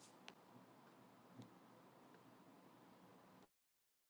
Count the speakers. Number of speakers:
zero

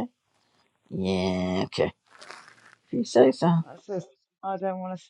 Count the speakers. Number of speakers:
two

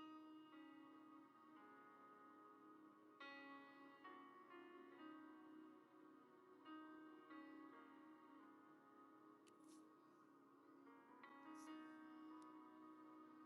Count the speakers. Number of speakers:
zero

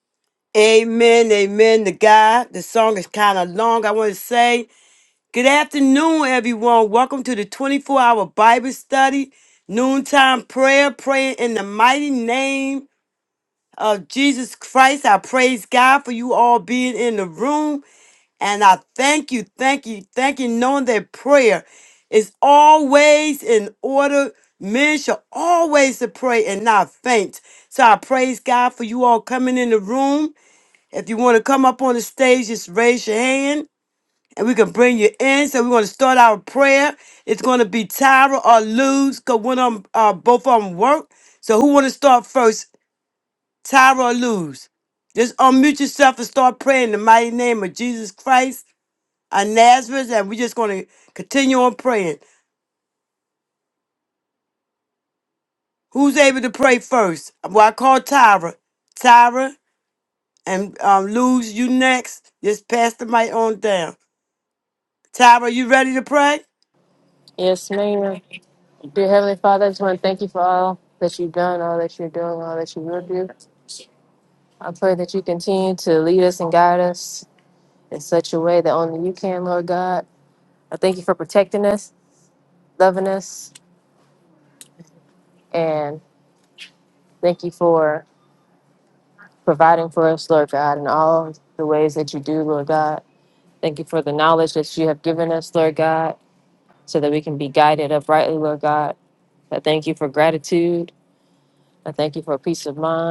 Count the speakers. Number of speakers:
two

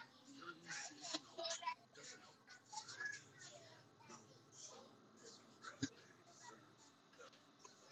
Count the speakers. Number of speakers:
zero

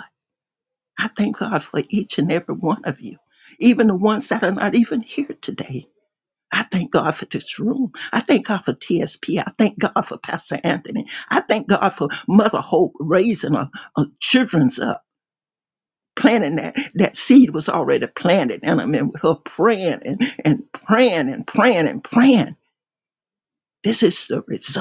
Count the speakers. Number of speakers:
one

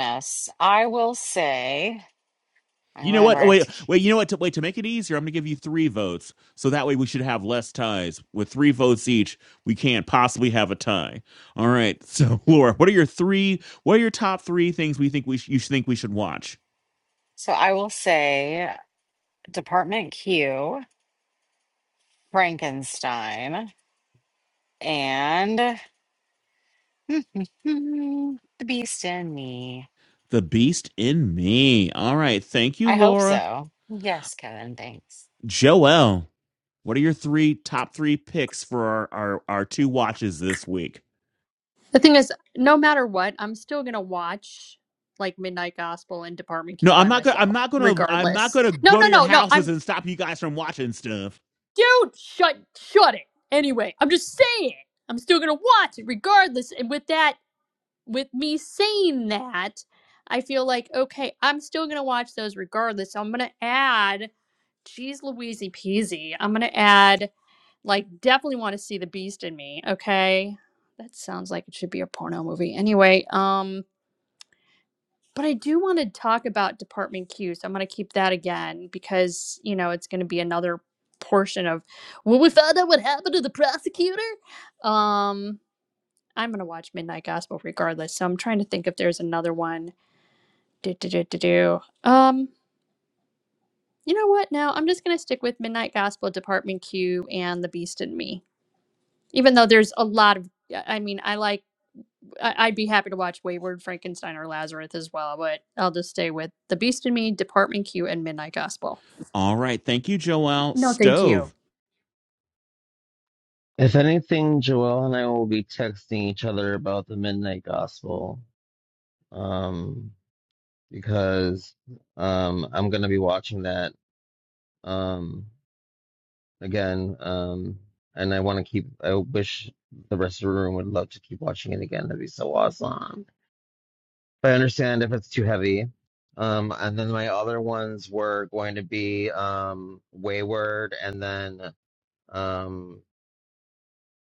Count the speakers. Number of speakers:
four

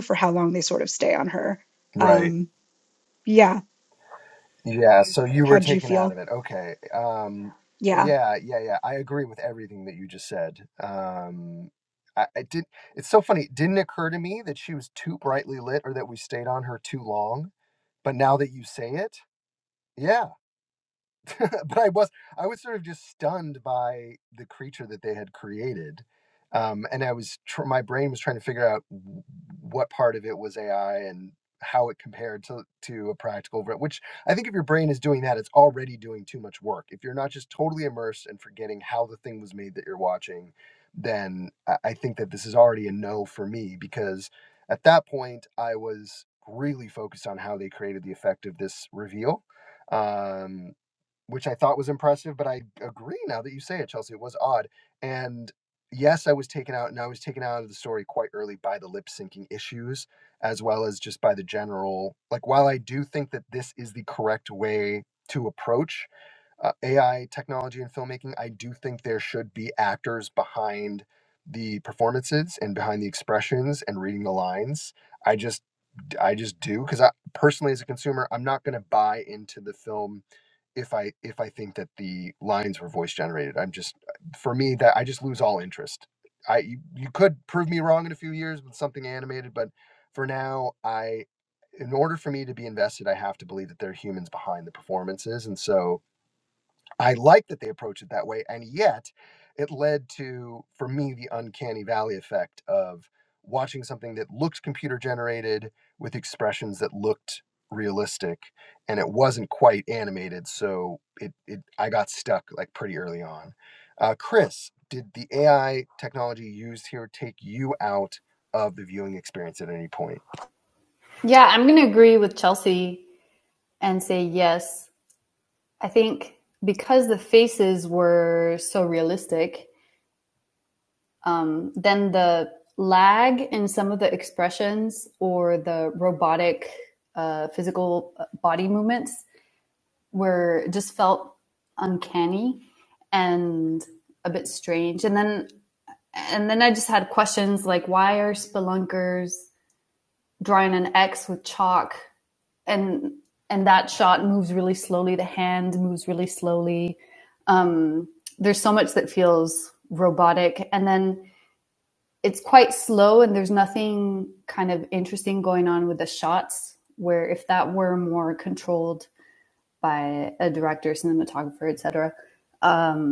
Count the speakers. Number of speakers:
three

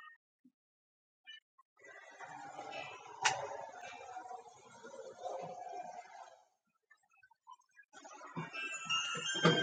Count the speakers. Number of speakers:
zero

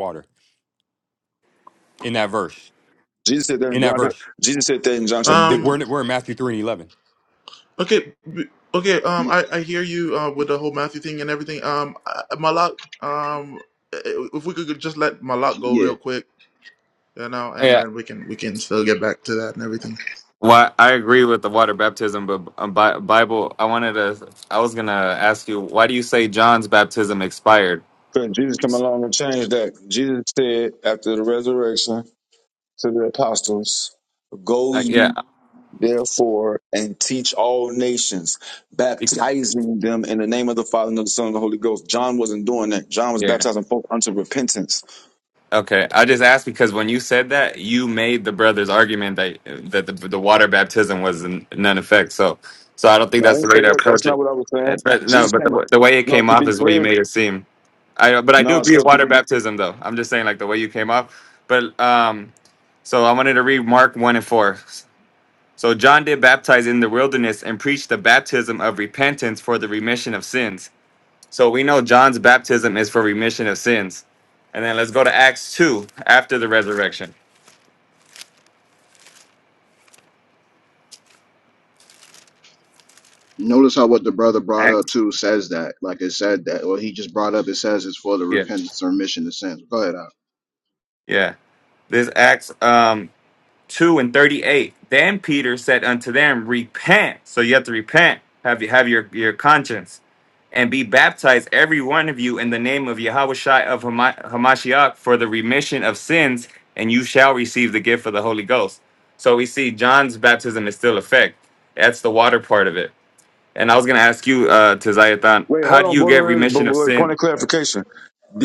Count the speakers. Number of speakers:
five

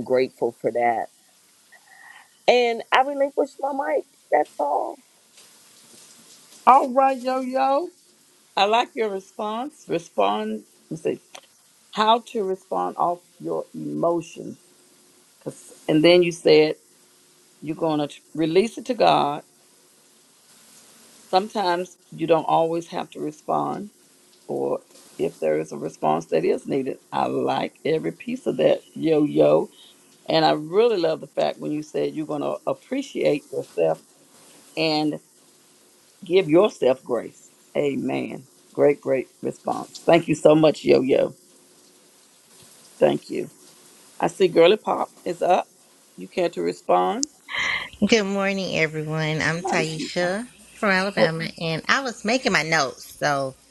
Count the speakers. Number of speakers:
three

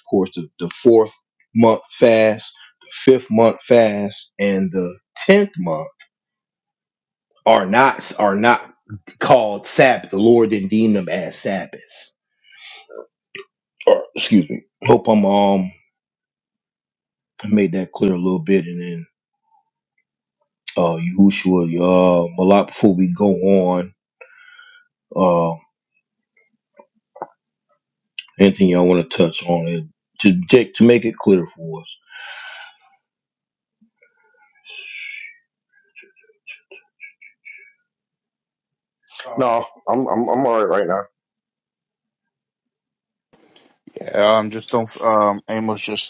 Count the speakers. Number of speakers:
three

